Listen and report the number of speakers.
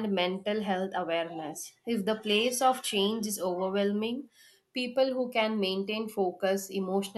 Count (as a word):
one